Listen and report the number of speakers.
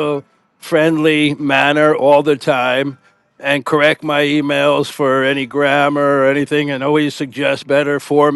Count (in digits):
1